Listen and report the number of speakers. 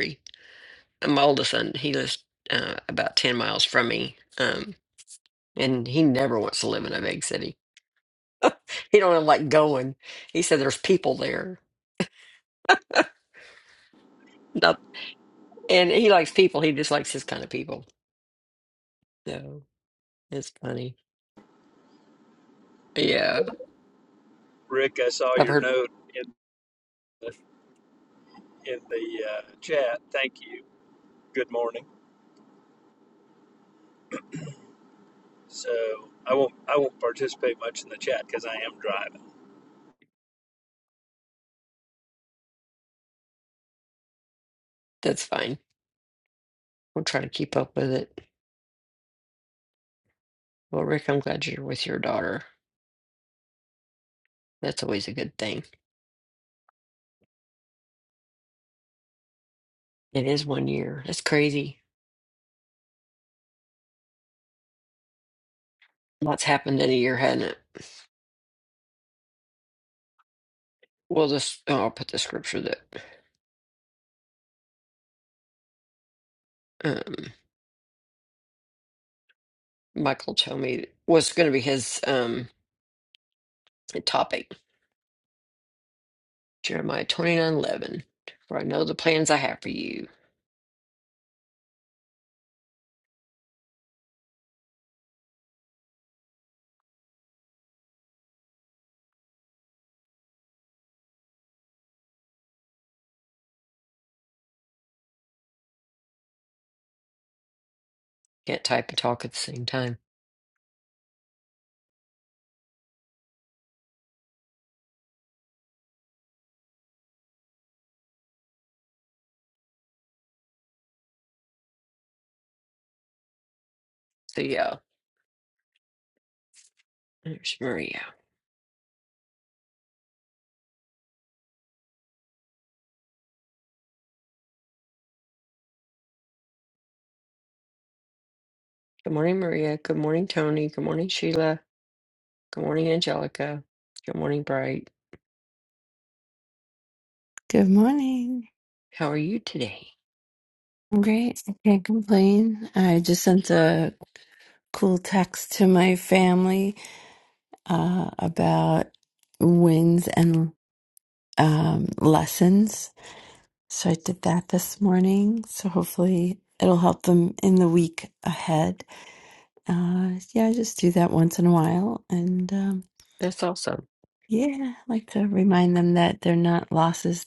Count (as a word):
three